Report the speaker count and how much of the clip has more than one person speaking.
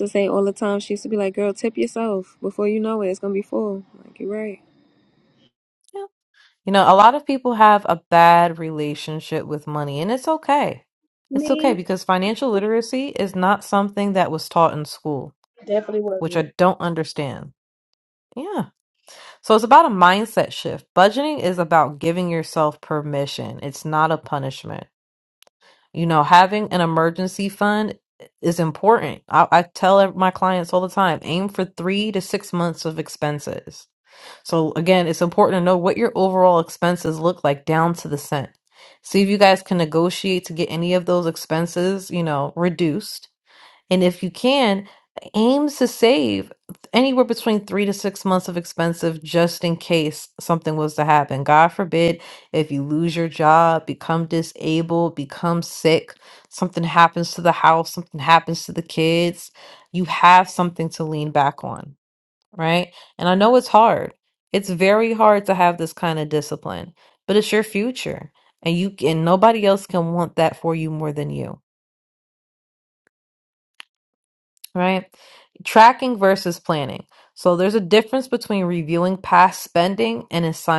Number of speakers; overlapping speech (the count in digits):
3, about 1%